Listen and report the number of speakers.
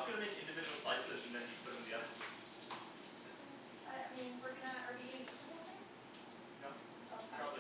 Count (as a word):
two